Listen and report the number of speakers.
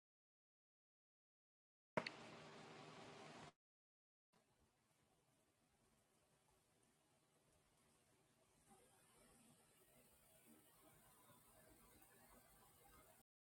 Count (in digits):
0